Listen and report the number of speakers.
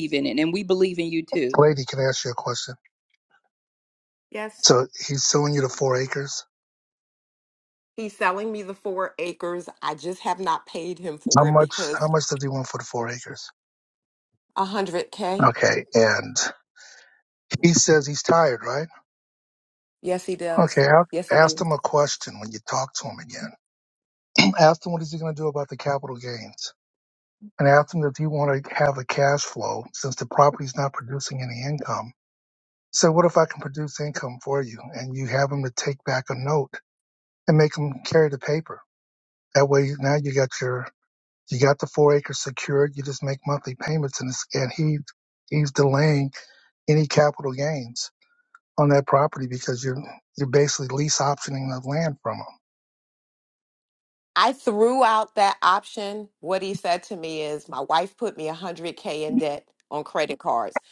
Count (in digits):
3